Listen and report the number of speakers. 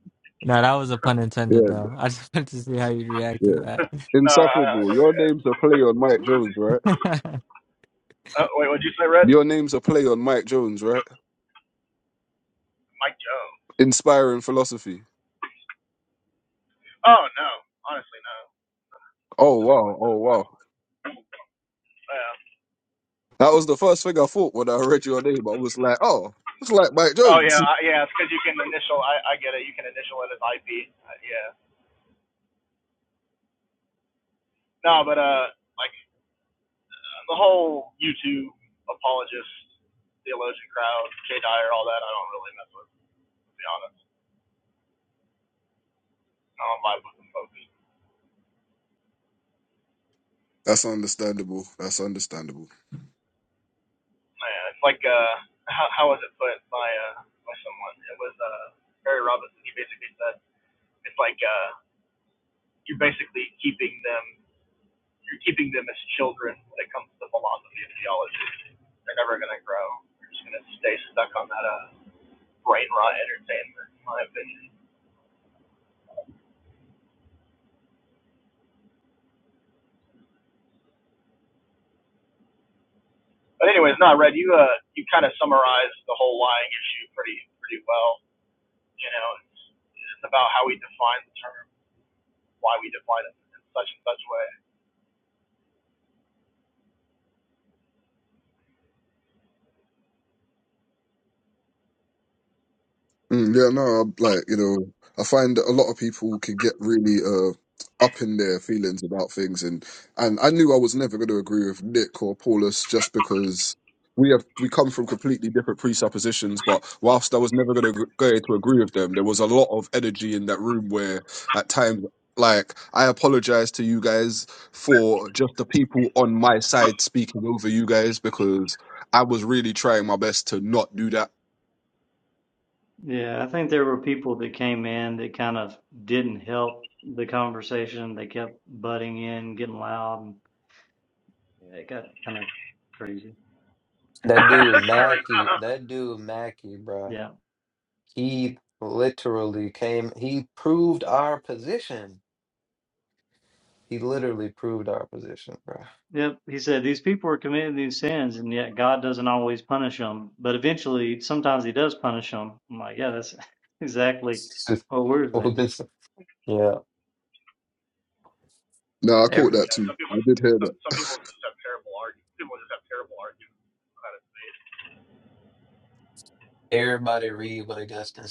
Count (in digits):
5